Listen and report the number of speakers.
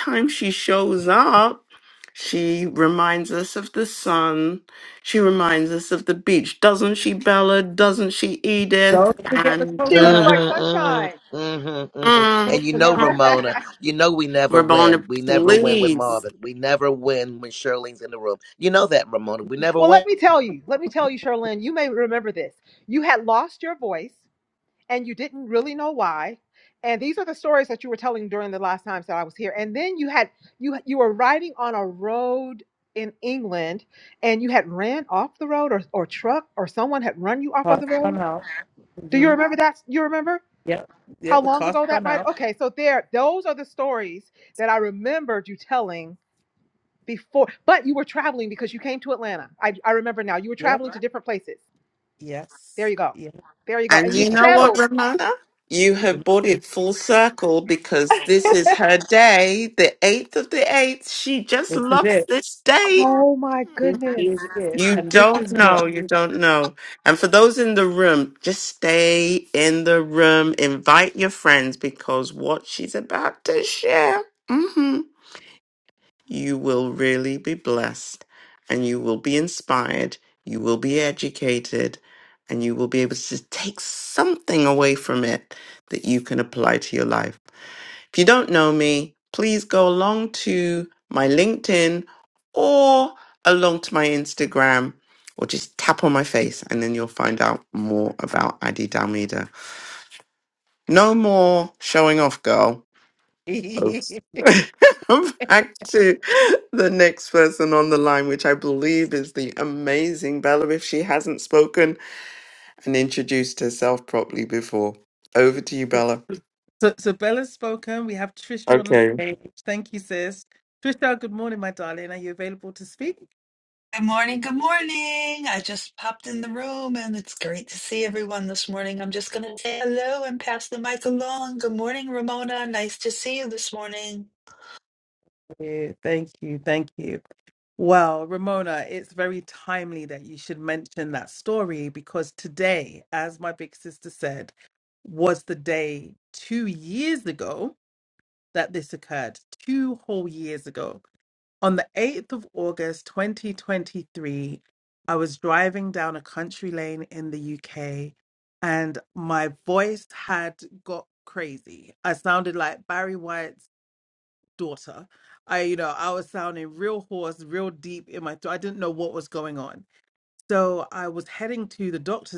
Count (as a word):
five